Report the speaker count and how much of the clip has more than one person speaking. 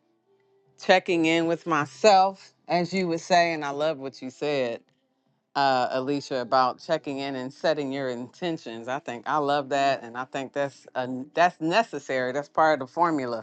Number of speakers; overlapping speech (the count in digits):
1, no overlap